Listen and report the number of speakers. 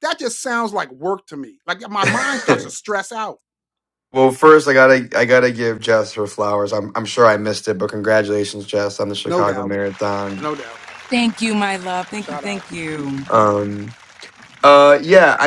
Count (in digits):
3